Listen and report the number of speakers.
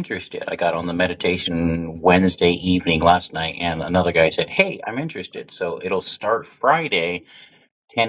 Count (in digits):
1